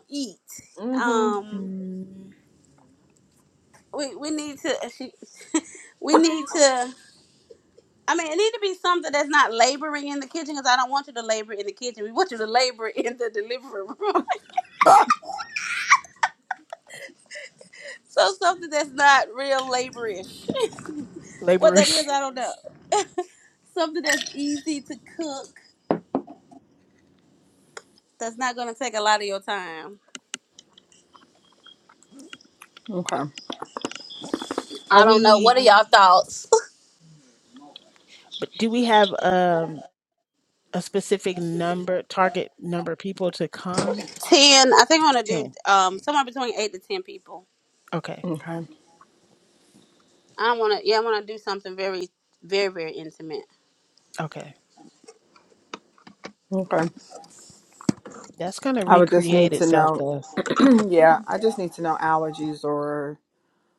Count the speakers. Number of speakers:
three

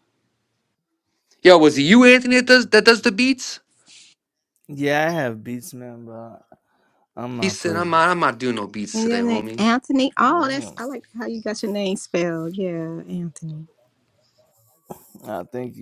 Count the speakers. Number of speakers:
three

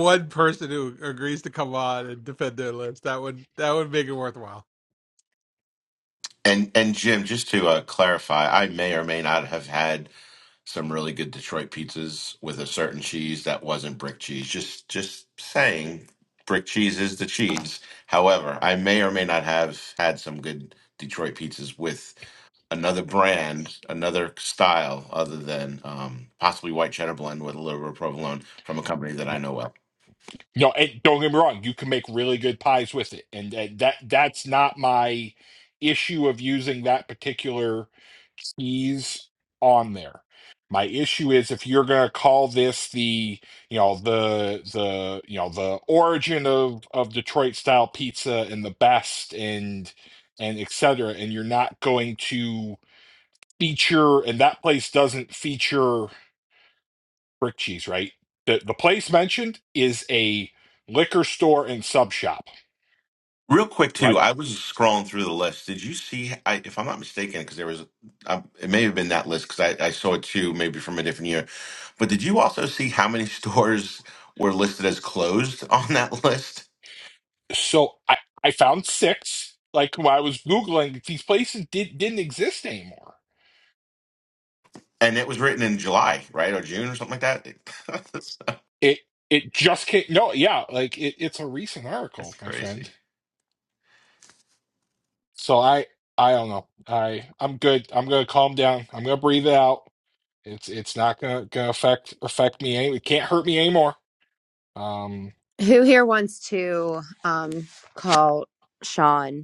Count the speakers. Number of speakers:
four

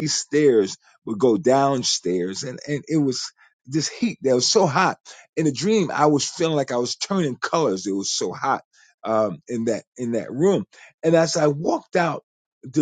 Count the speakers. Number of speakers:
one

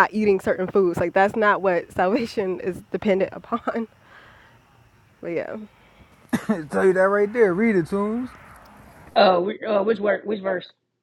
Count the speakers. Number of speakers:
three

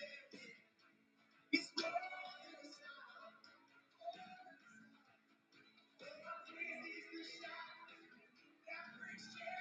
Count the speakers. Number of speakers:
zero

